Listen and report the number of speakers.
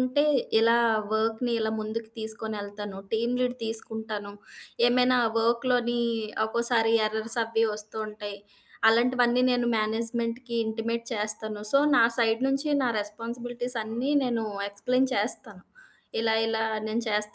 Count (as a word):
one